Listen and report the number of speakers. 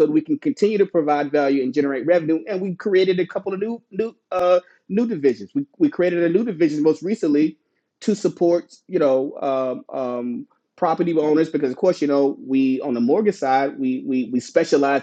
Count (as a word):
one